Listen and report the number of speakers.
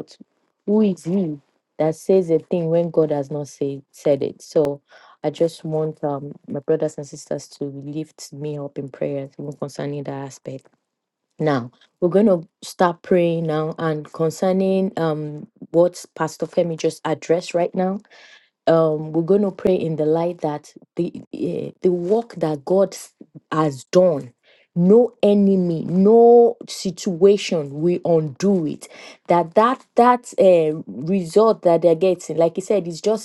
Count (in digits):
1